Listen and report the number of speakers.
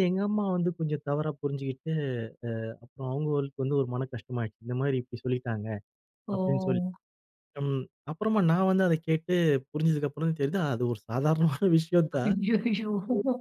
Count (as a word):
two